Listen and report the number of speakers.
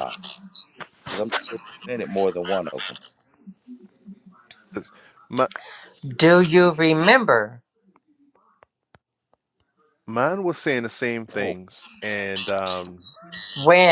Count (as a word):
three